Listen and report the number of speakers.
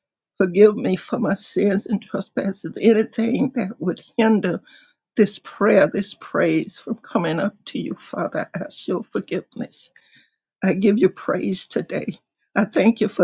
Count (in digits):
1